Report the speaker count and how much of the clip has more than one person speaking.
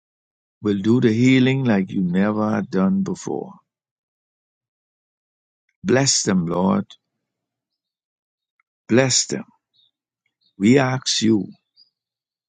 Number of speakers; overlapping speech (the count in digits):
1, no overlap